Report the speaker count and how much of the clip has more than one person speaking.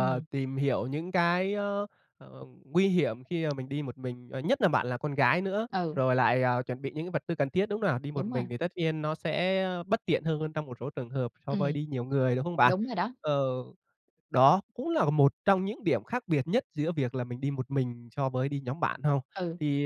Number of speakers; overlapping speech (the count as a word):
two, about 6%